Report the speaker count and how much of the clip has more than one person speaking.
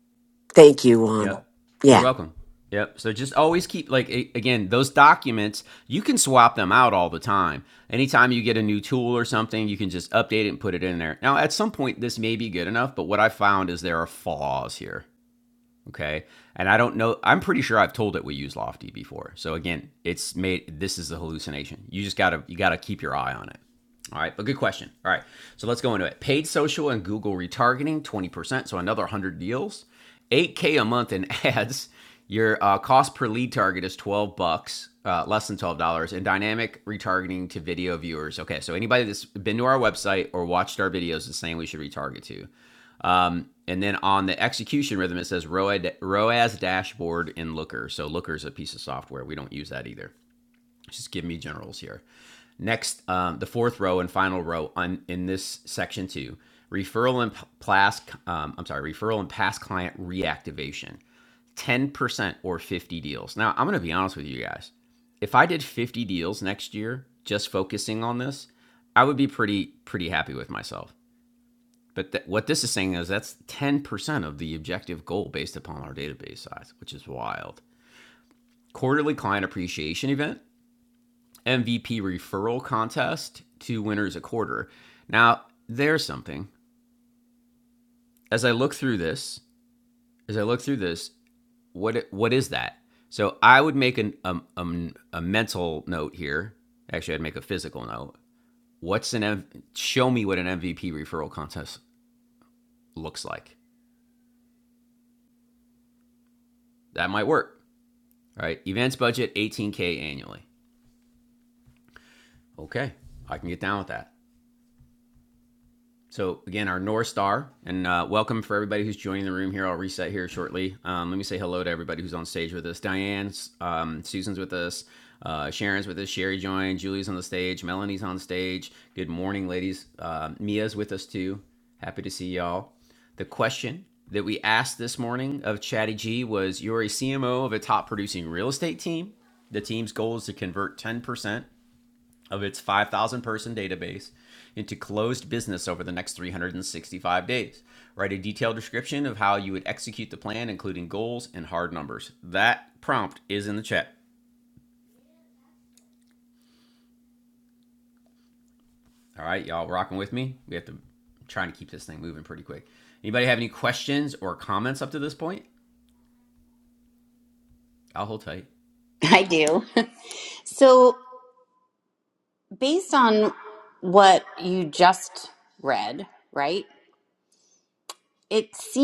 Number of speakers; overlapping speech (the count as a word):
three, under 1%